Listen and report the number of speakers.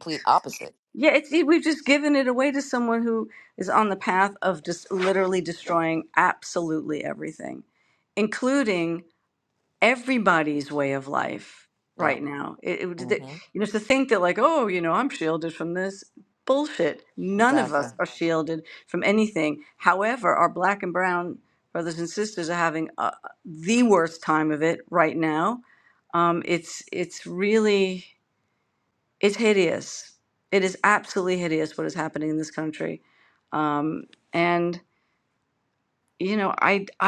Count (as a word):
two